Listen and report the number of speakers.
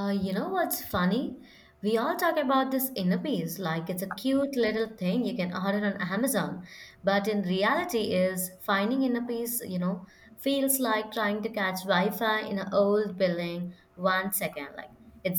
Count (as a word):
one